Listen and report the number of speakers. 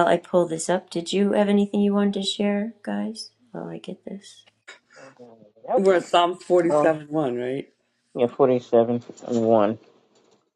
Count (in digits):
3